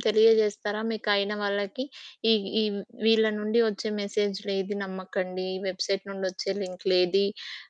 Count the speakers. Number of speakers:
one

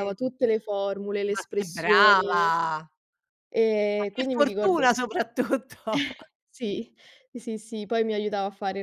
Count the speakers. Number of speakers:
two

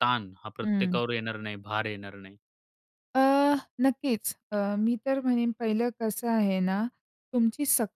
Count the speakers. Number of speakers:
two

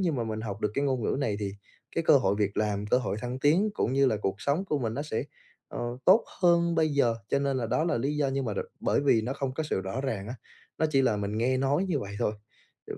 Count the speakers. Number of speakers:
one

